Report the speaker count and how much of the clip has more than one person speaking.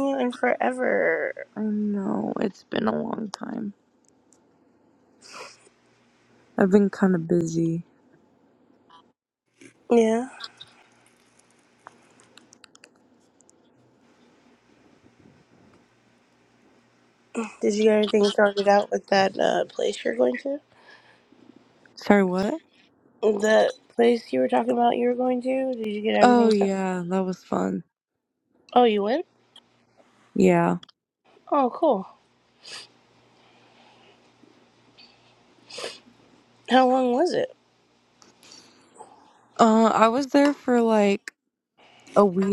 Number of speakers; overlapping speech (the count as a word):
two, about 1%